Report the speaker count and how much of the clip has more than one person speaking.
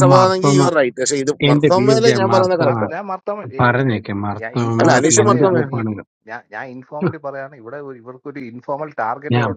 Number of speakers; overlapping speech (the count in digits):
3, about 42%